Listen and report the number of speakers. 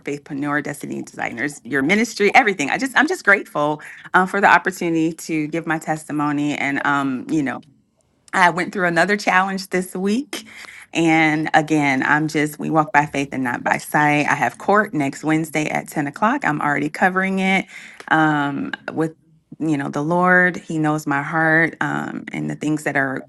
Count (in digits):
1